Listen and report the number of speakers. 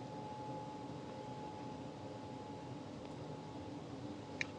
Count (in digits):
0